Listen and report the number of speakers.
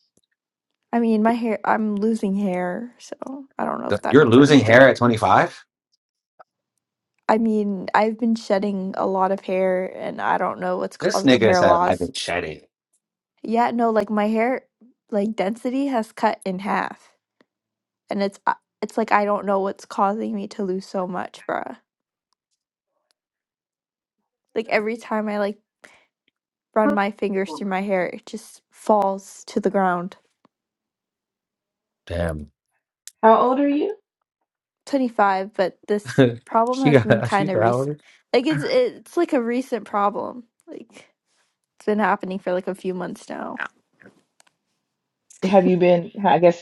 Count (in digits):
3